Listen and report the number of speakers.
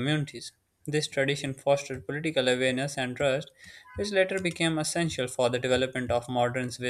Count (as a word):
one